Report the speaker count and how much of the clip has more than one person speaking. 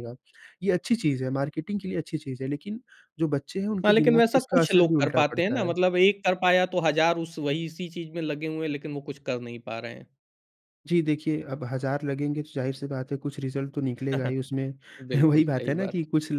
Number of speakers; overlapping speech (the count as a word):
two, about 16%